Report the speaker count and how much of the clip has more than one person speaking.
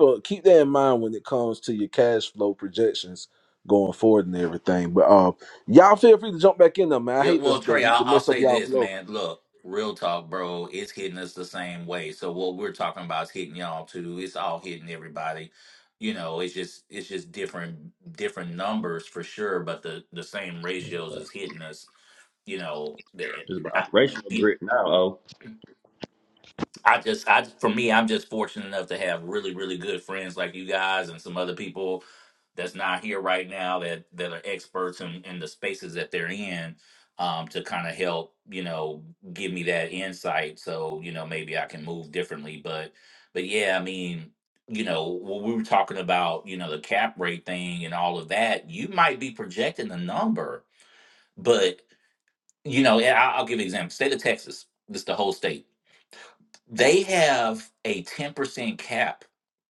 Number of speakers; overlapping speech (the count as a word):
three, about 5%